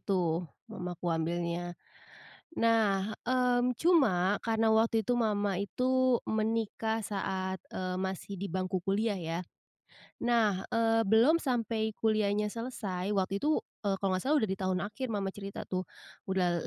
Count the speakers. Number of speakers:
one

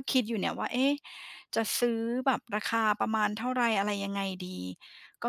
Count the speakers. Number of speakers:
one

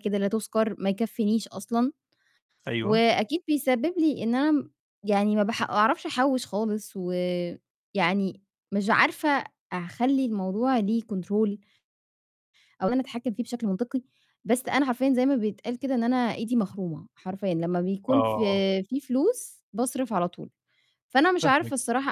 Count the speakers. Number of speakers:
two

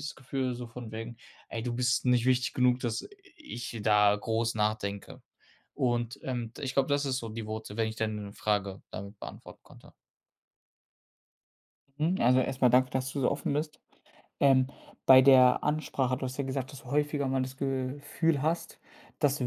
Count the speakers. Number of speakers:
two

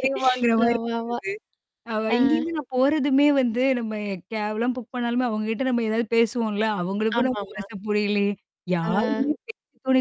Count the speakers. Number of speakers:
two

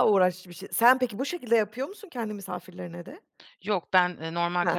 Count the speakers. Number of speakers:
two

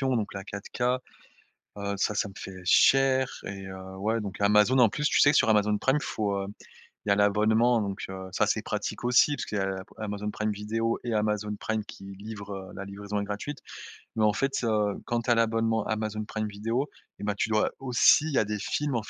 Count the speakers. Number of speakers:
one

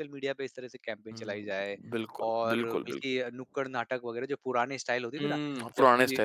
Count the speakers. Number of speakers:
two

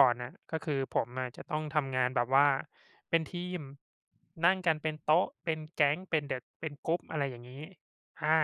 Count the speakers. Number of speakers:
one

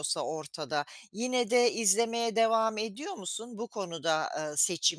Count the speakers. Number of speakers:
one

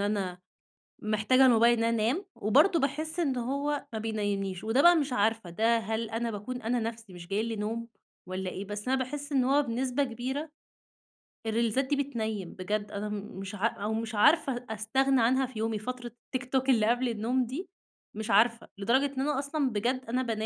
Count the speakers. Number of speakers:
one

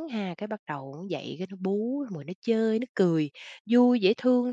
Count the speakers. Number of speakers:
one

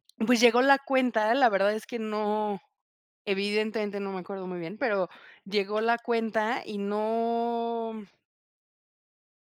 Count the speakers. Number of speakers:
one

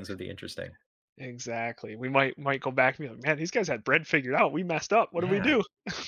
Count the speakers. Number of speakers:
two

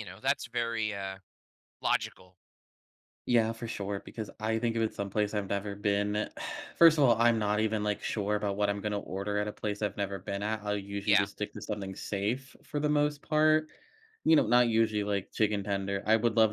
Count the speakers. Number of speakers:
two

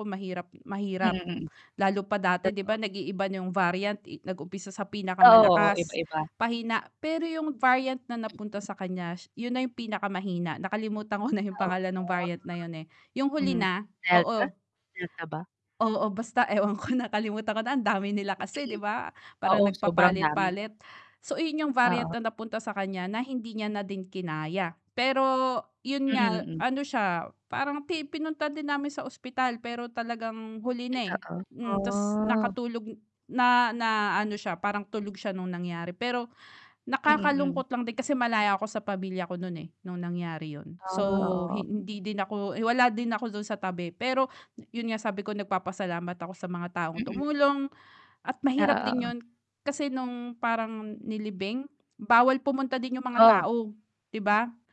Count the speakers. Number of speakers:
two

